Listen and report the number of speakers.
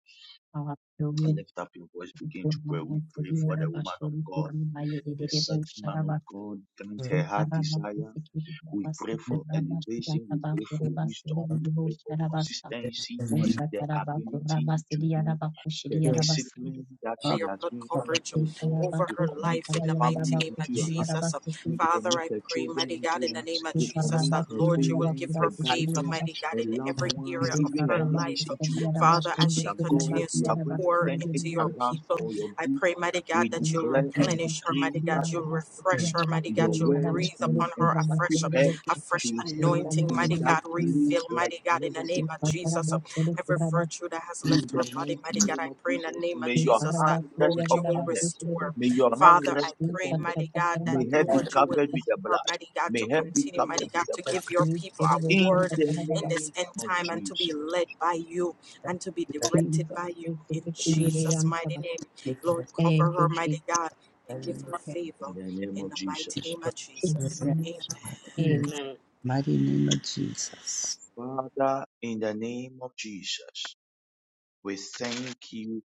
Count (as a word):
four